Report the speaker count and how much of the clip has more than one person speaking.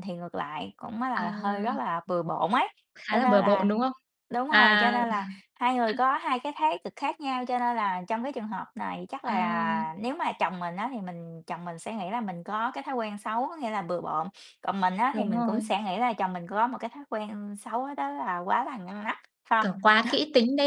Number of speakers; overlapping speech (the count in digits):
2, about 13%